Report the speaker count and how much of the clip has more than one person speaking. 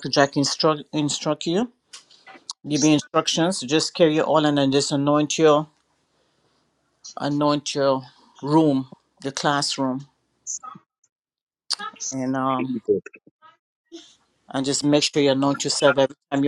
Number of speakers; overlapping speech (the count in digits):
1, no overlap